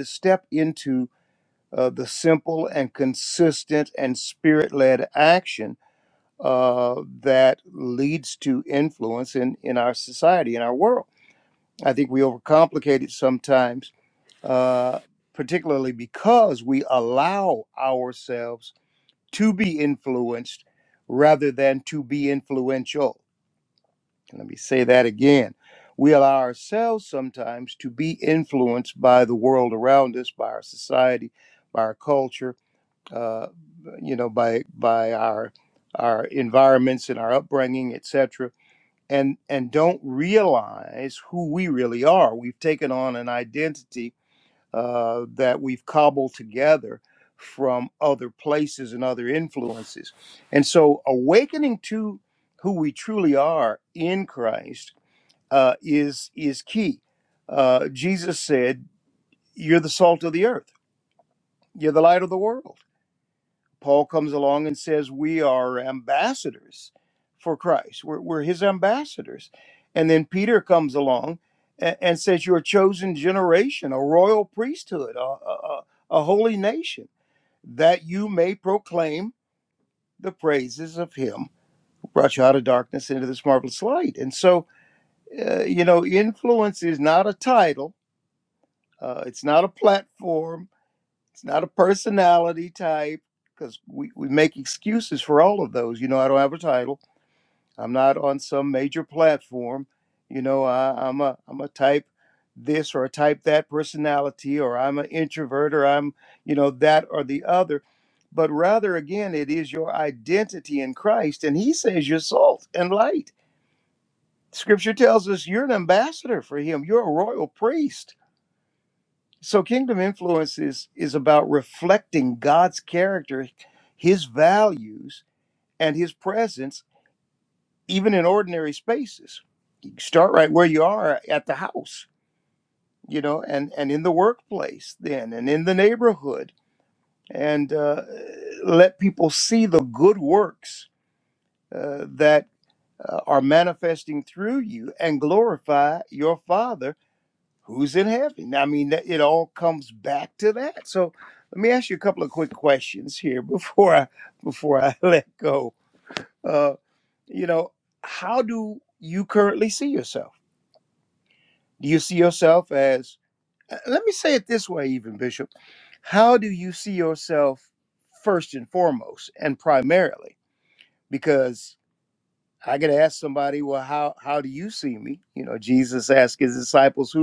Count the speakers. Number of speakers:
1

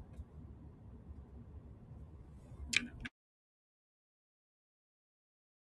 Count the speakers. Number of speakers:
0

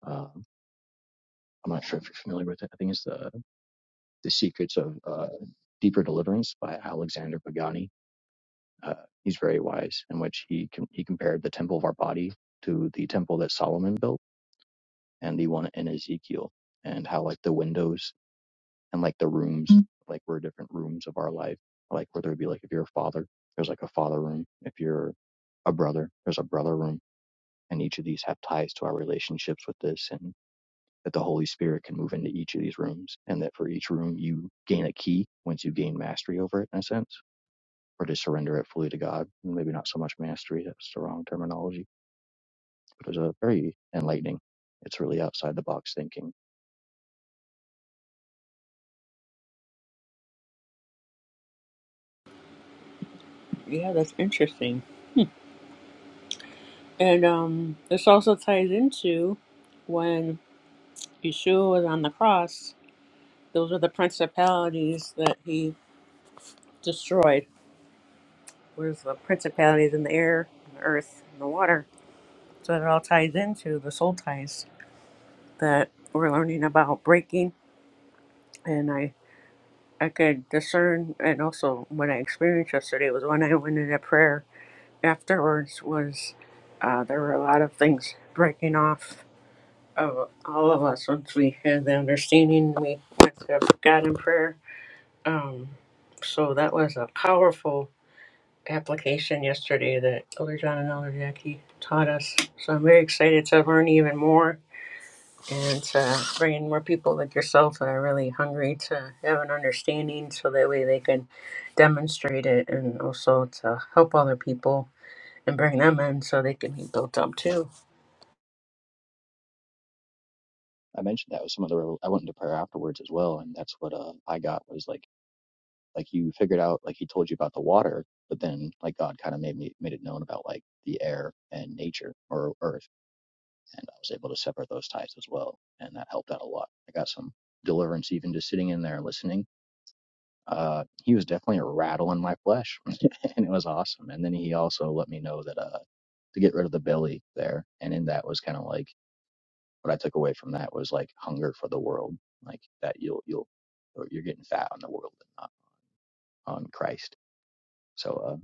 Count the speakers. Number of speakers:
2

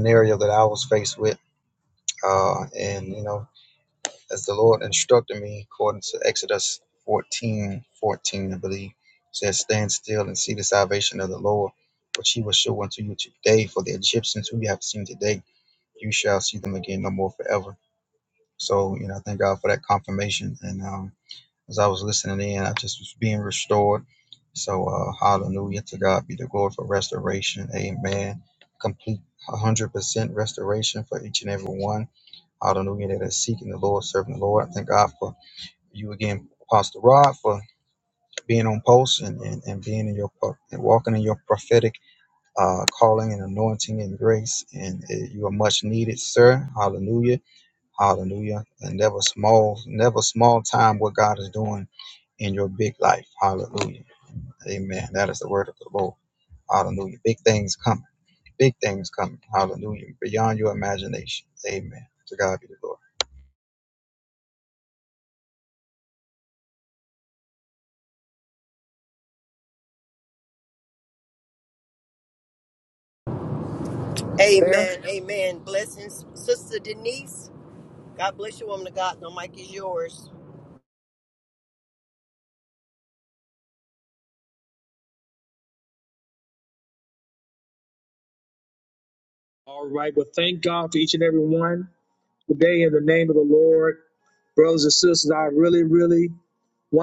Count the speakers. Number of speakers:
3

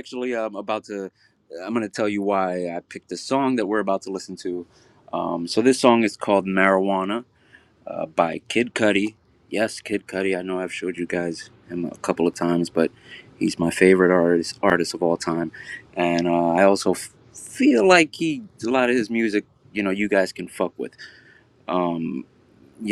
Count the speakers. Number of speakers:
1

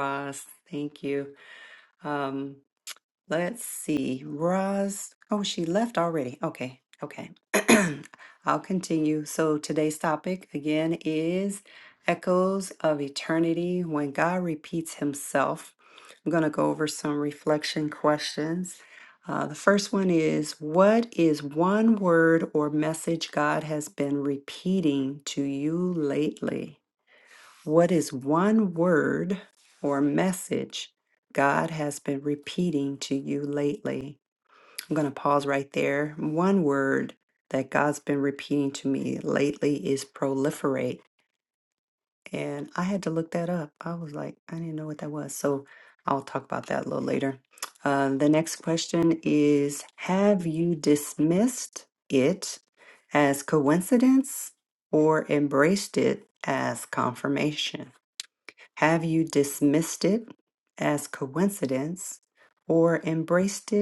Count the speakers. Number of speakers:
1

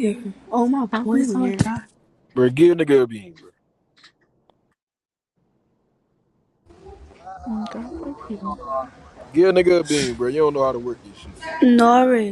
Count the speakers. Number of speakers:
3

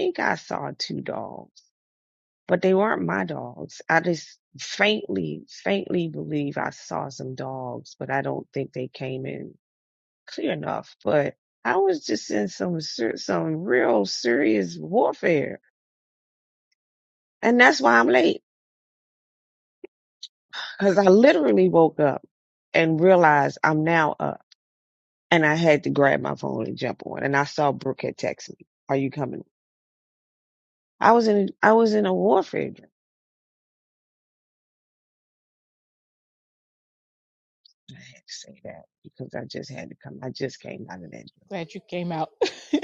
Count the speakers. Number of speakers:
2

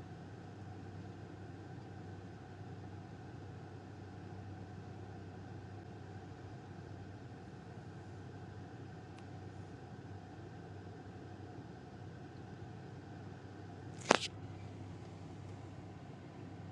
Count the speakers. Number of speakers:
0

